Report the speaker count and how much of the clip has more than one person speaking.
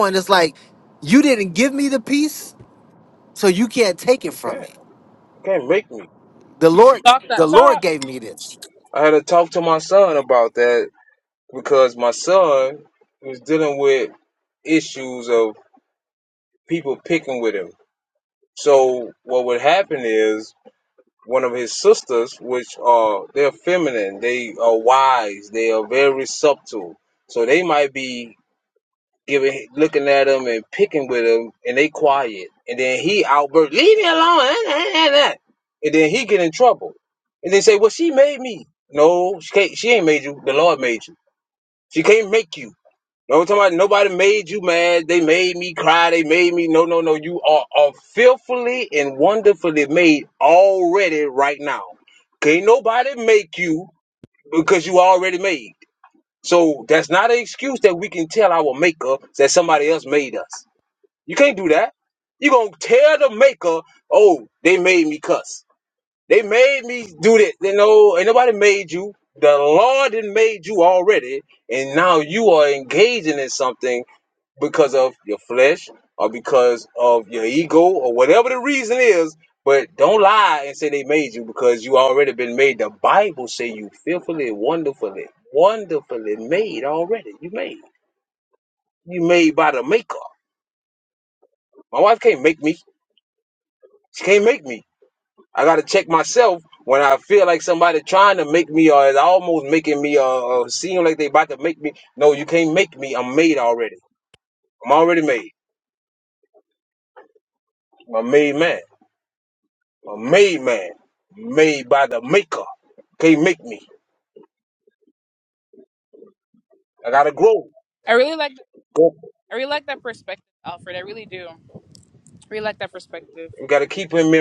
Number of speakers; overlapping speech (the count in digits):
3, about 1%